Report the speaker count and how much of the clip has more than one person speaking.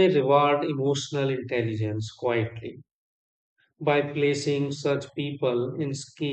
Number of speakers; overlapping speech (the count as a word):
one, no overlap